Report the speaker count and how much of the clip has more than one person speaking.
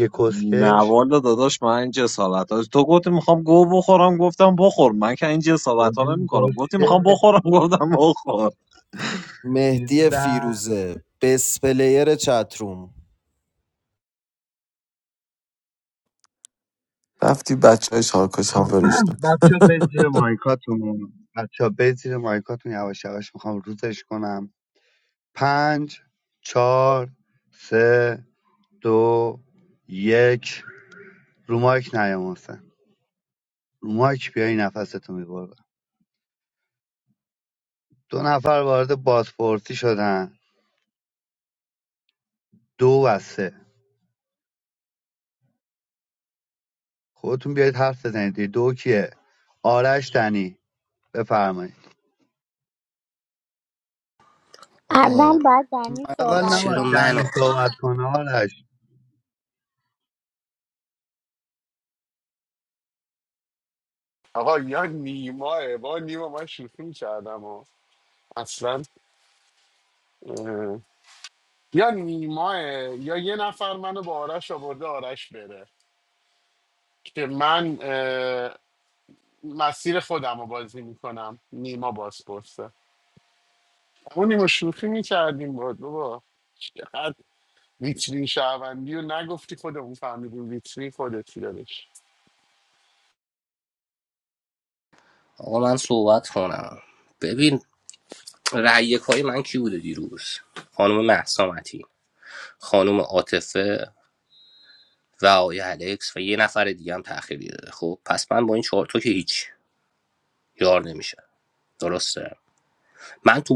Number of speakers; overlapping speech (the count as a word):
seven, about 4%